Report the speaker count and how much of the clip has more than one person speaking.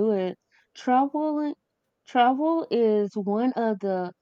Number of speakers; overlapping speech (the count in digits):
1, no overlap